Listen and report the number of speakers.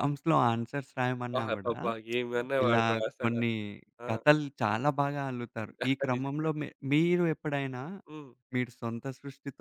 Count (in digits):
2